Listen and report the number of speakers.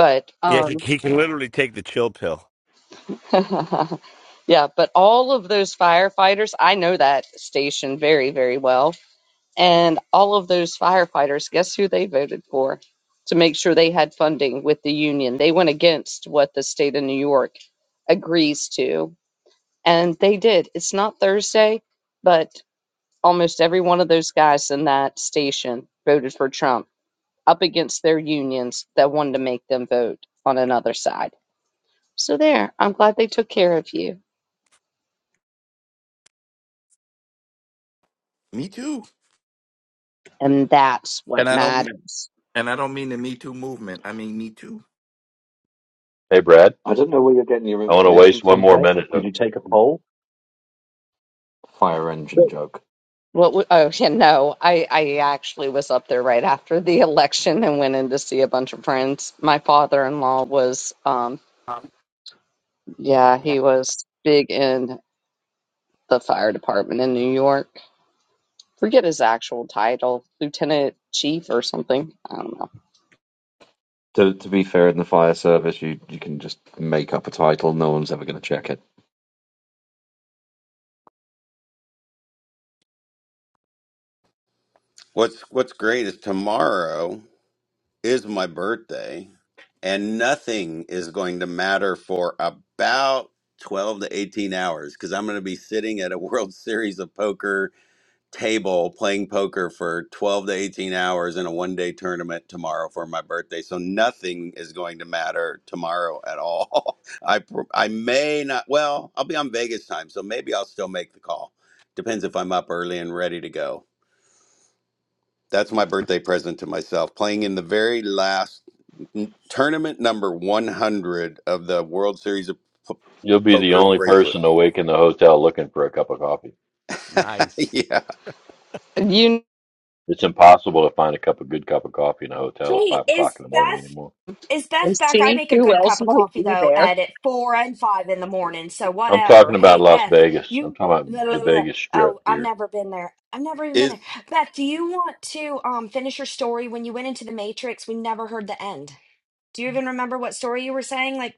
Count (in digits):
7